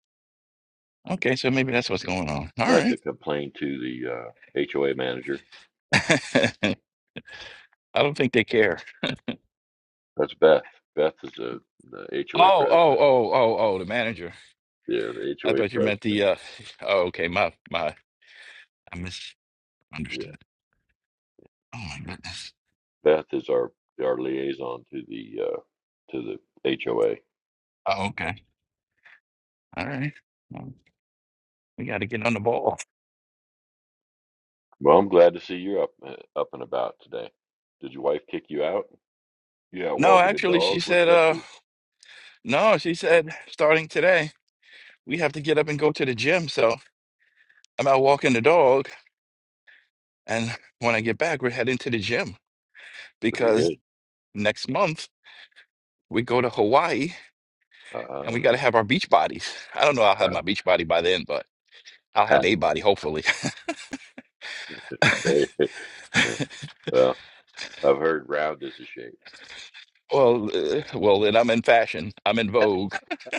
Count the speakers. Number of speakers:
two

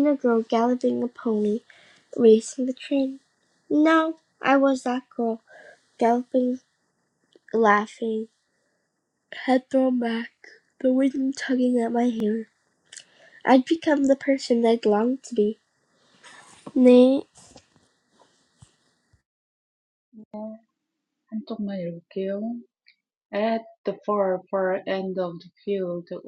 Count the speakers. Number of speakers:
two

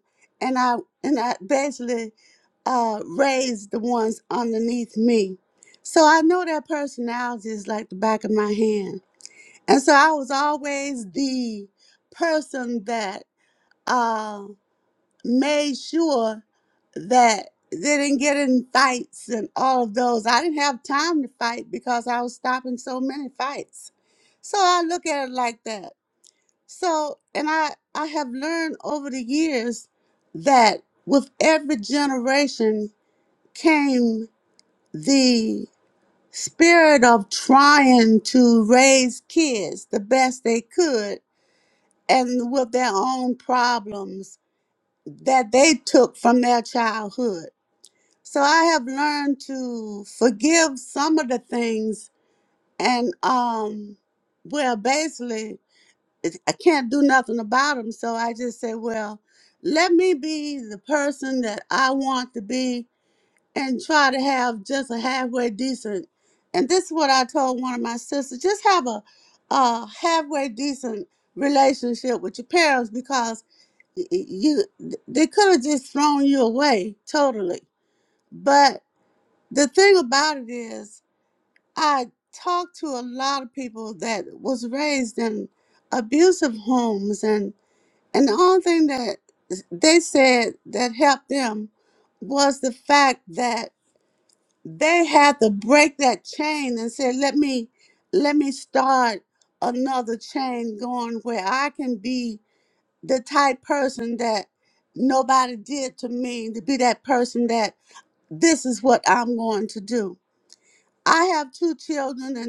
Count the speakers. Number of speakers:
one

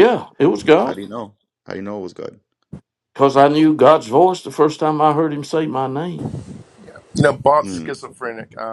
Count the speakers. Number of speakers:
three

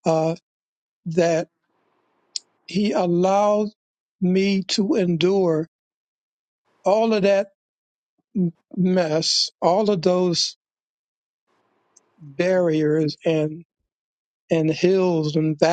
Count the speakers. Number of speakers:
one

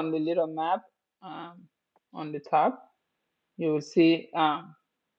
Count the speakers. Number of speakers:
one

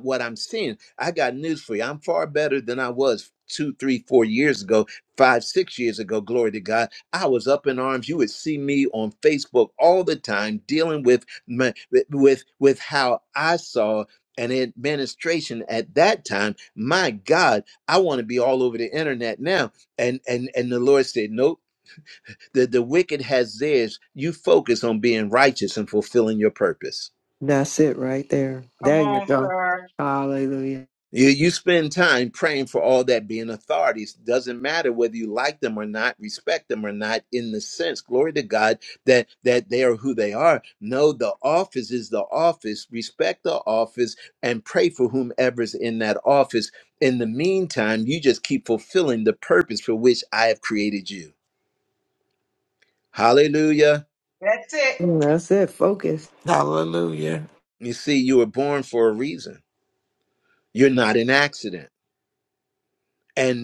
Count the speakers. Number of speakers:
four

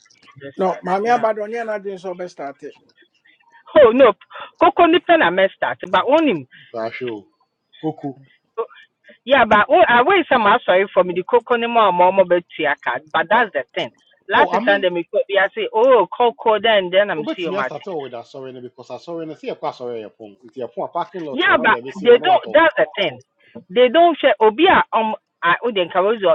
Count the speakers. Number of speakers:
three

